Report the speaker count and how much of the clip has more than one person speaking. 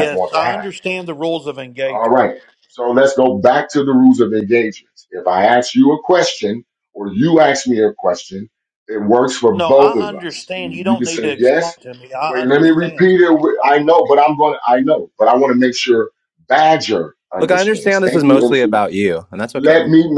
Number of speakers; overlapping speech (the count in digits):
3, about 26%